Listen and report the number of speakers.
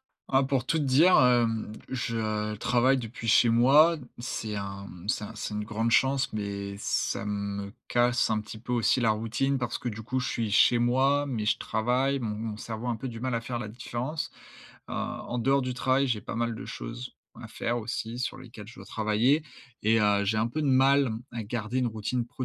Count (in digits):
1